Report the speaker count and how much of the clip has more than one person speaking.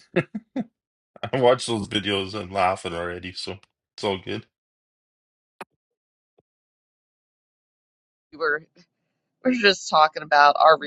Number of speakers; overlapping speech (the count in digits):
2, no overlap